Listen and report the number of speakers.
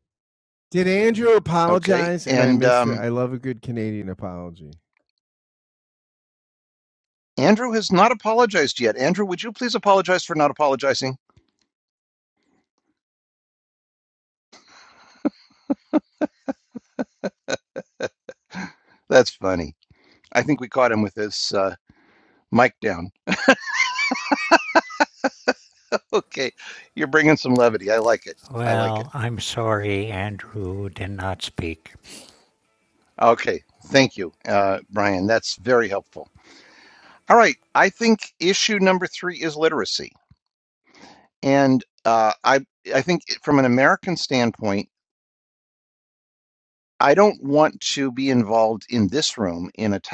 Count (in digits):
3